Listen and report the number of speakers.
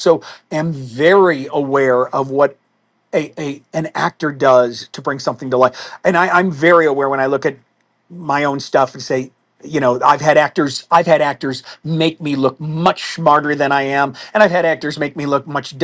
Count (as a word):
one